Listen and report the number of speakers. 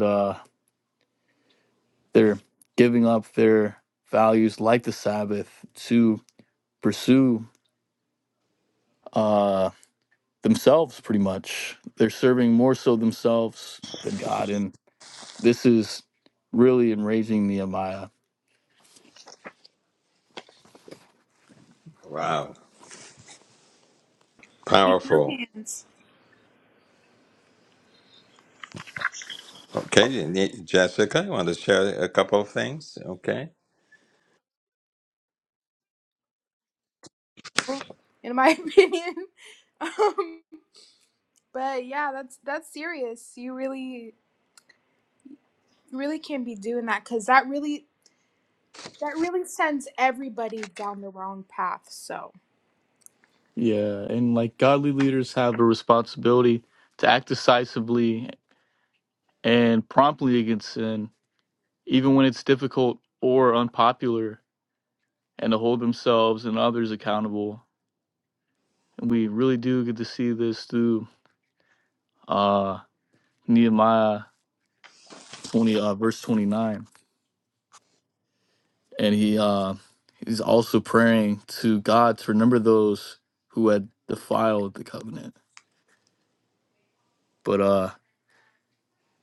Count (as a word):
three